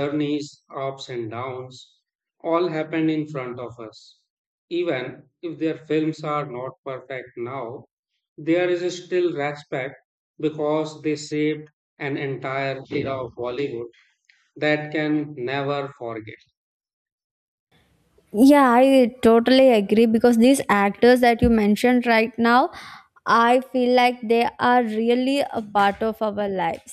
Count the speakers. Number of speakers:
2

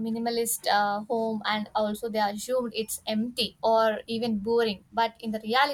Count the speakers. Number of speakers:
1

